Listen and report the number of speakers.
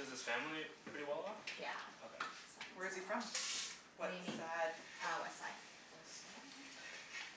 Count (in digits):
3